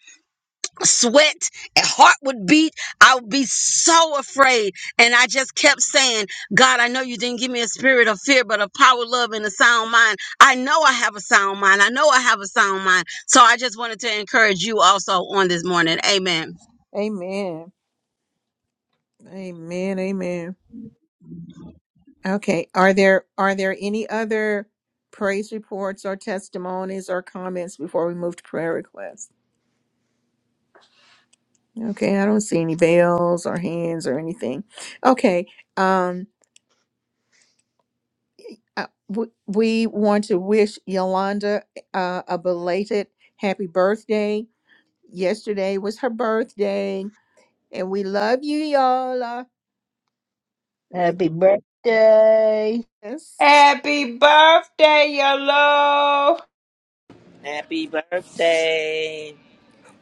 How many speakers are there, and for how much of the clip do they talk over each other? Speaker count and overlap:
five, under 1%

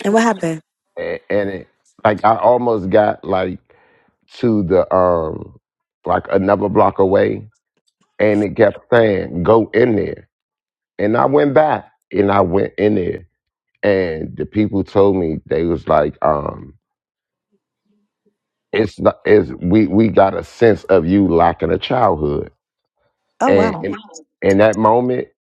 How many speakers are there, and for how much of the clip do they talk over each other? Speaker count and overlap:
two, about 1%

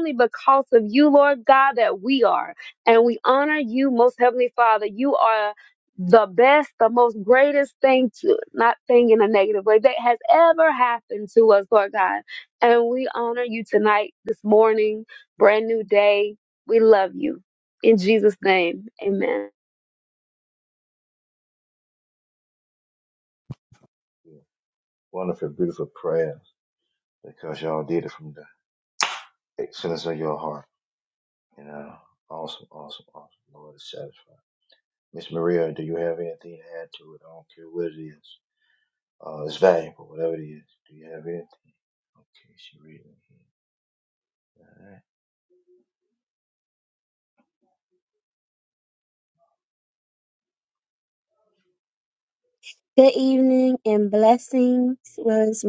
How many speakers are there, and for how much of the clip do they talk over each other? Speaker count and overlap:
three, no overlap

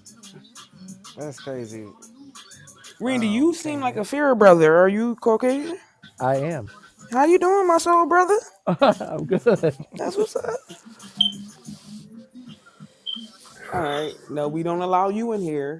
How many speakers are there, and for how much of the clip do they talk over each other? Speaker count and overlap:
three, about 6%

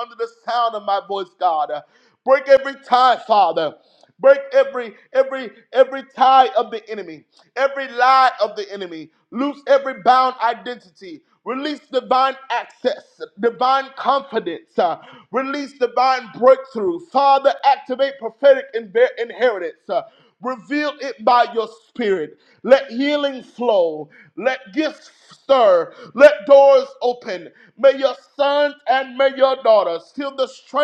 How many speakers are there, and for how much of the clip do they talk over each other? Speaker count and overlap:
one, no overlap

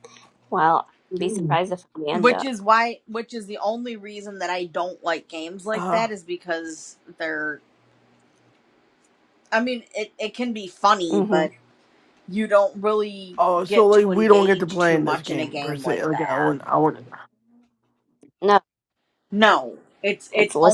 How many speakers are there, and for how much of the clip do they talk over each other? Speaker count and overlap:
three, about 21%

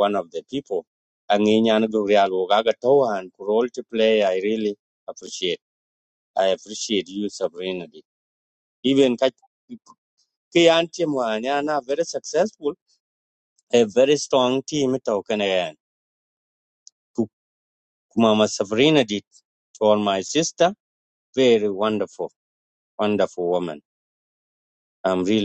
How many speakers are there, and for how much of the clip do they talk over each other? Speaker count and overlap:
one, no overlap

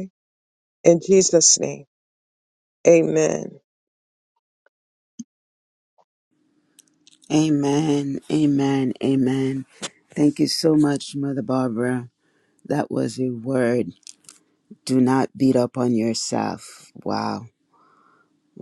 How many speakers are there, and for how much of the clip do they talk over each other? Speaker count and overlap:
two, no overlap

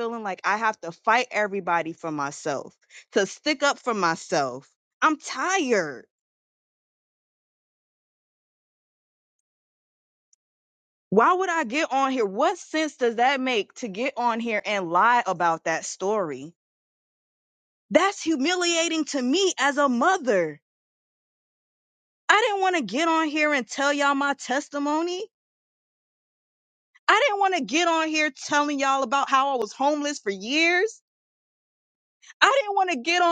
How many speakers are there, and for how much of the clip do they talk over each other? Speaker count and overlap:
one, no overlap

